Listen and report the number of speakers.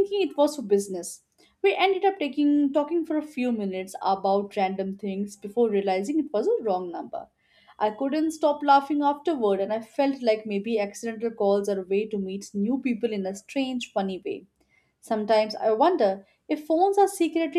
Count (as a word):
one